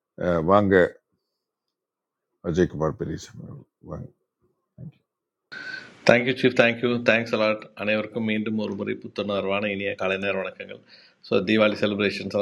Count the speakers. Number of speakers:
2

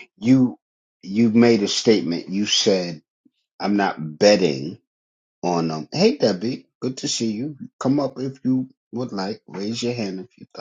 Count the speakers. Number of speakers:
1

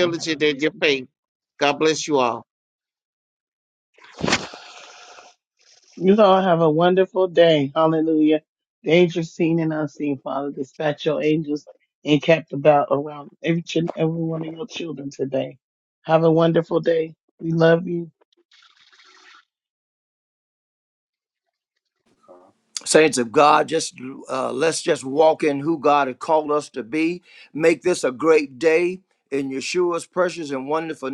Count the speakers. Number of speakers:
3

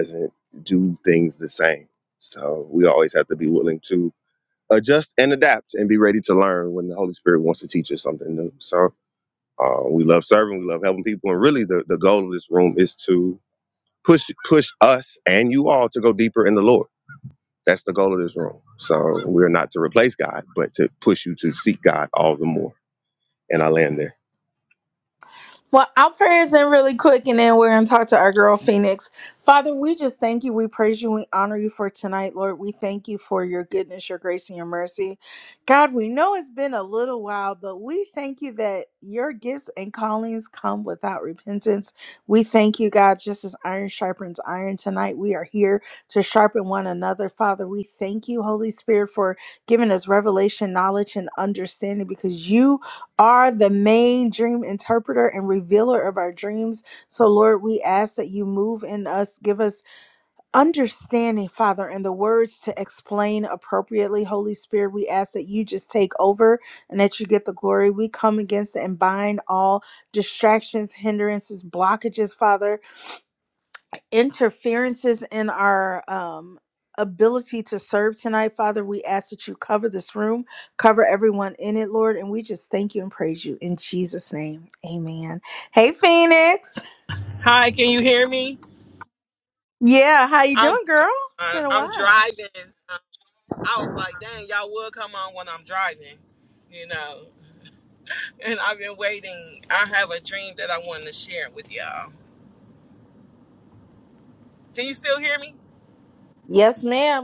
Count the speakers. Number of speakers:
3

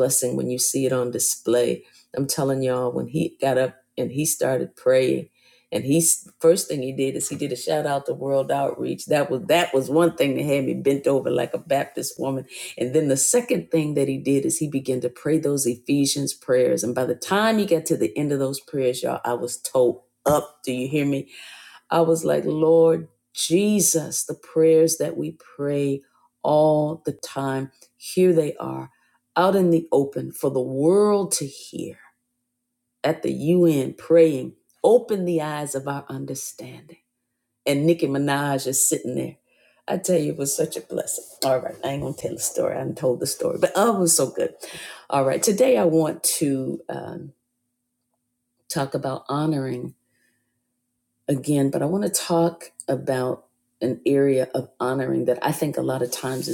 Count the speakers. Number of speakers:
1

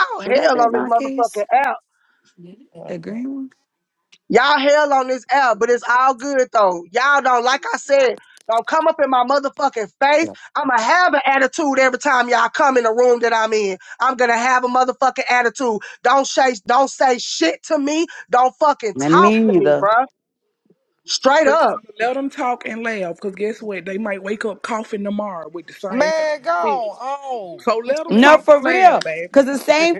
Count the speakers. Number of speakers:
4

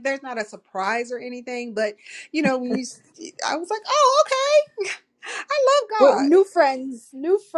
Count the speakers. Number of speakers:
2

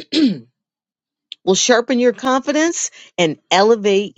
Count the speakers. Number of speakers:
1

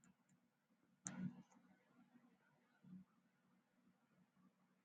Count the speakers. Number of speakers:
0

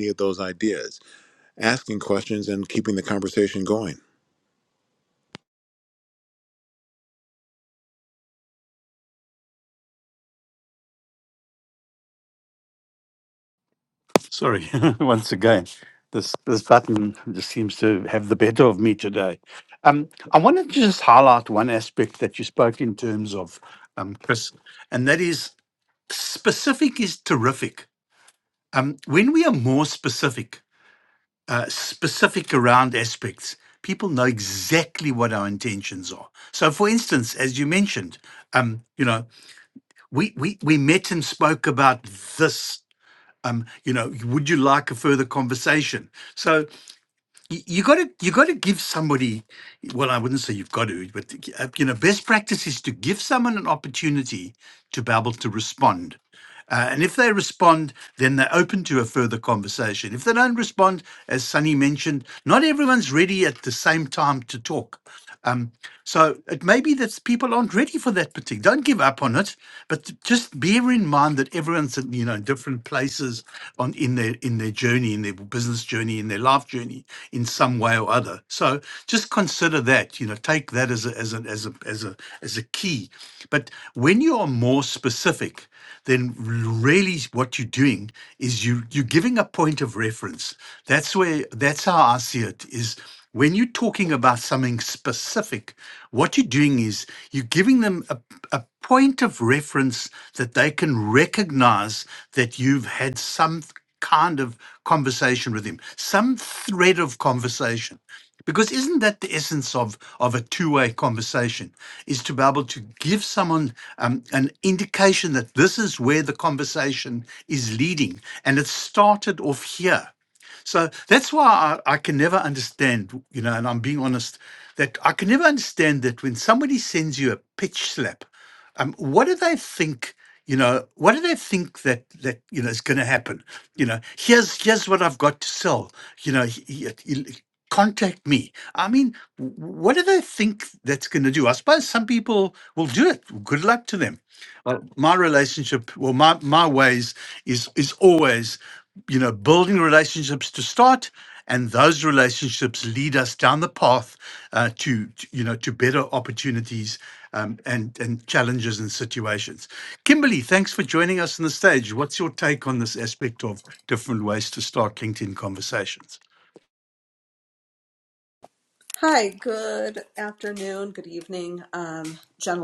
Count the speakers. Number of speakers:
3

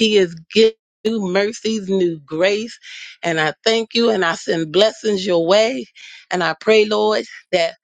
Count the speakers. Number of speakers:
1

